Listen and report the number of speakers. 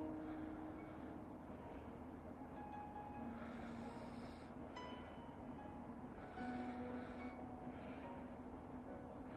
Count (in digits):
0